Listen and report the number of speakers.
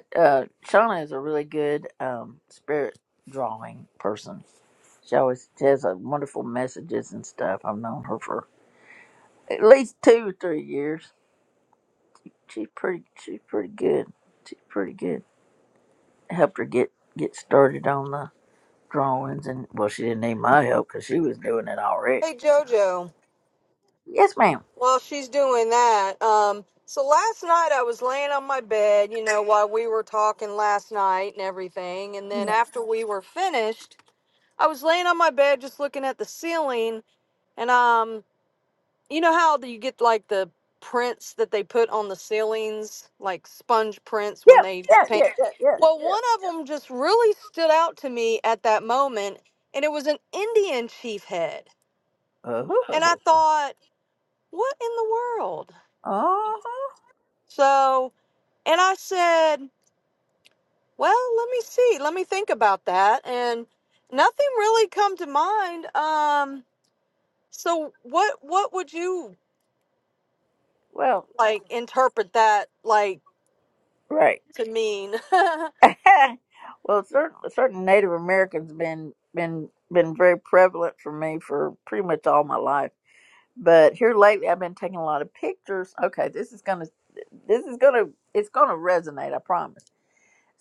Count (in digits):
2